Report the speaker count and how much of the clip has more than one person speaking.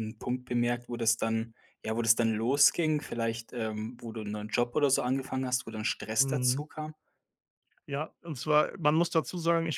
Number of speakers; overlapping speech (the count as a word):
two, about 4%